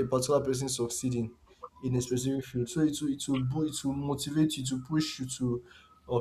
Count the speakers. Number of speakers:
1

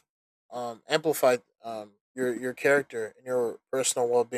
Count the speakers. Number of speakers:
1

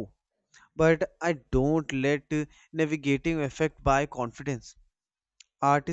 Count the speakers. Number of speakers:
1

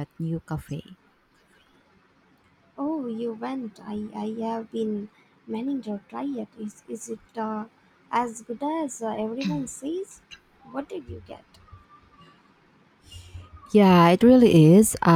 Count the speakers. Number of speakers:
2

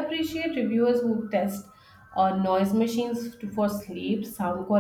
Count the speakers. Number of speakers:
1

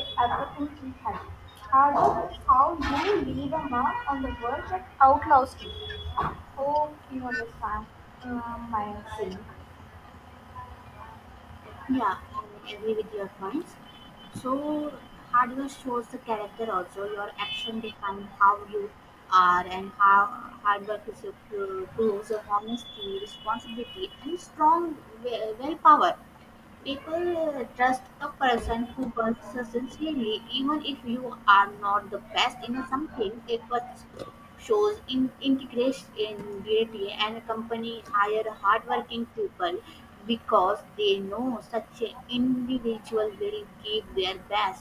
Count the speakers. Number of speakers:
2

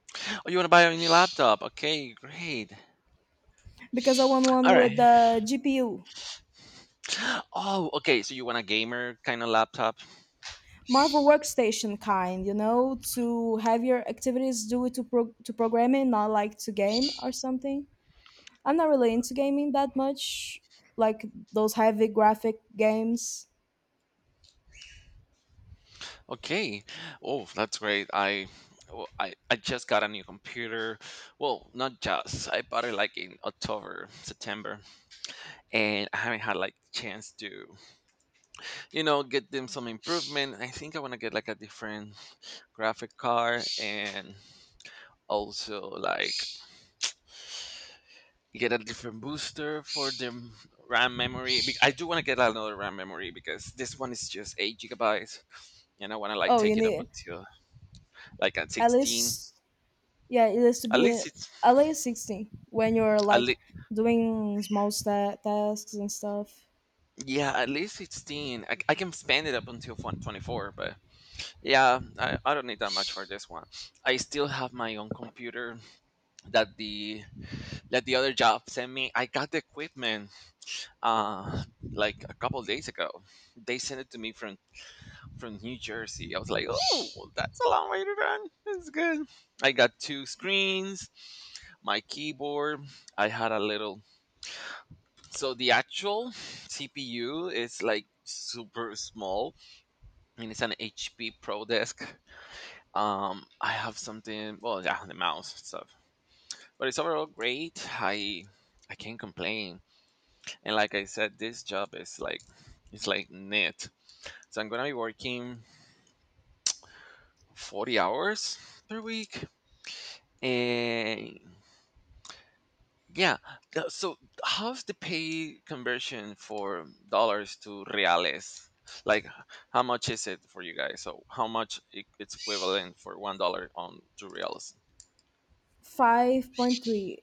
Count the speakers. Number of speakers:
2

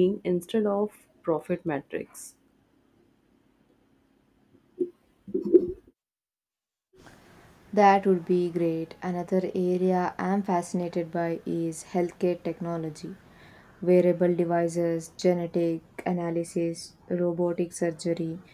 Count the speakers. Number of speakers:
2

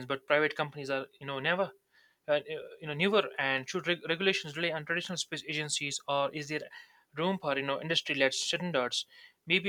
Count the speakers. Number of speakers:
1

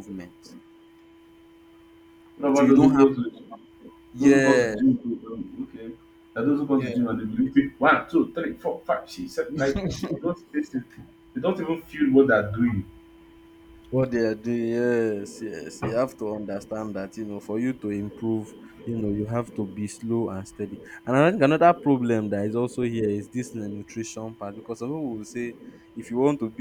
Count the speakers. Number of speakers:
2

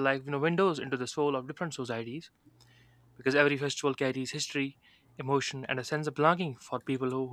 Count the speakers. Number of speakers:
1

